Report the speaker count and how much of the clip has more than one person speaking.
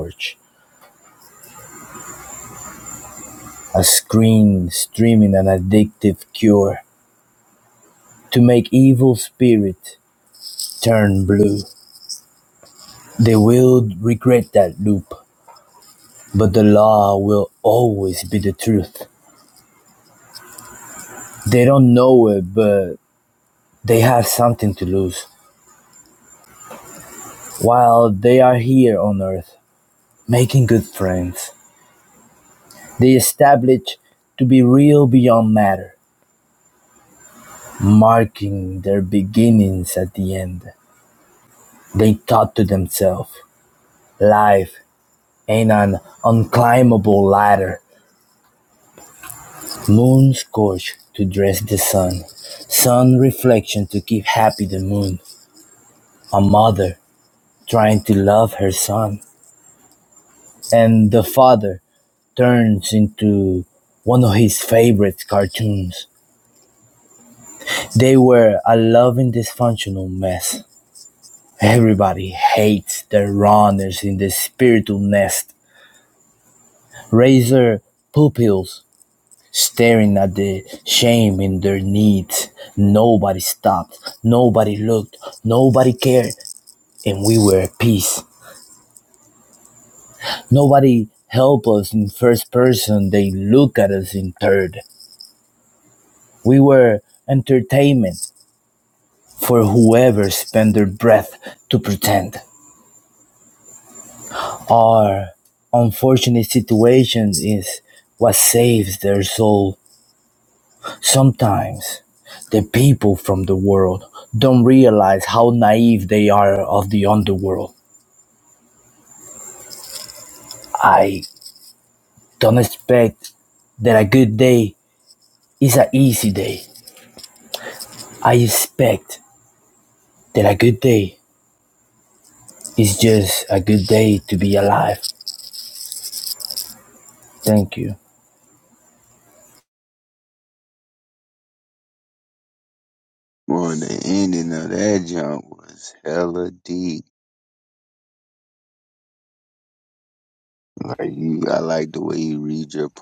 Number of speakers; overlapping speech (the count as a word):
two, no overlap